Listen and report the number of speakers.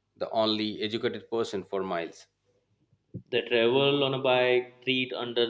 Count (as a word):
two